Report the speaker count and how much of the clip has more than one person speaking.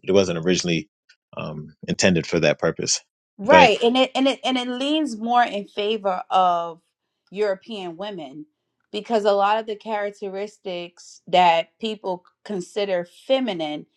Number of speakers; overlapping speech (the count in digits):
2, about 1%